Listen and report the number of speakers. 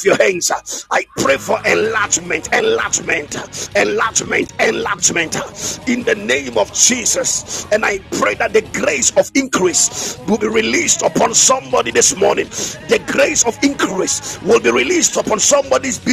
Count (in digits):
1